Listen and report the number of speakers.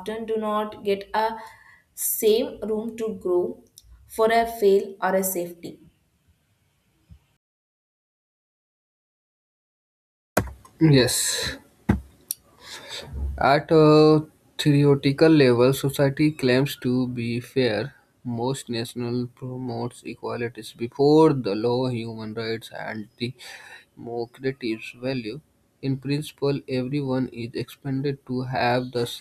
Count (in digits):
2